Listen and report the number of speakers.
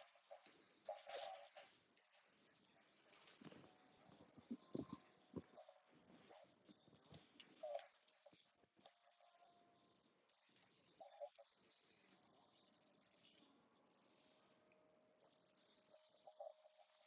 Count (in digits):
0